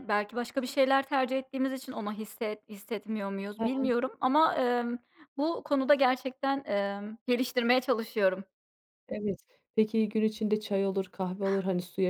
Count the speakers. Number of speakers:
2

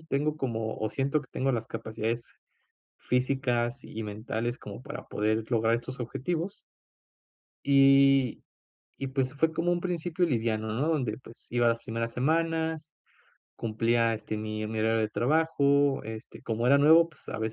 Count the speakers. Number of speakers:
1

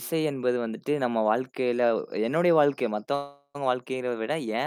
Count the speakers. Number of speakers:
1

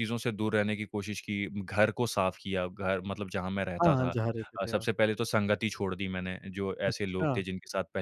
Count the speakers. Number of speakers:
2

